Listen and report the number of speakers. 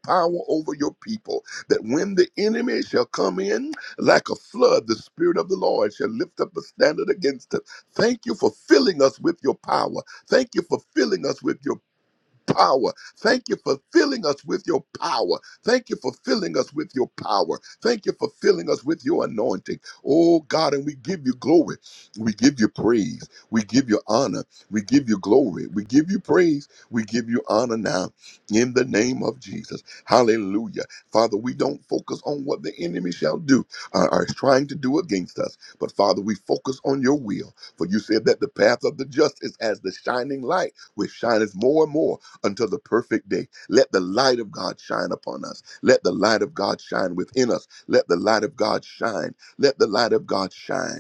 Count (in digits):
1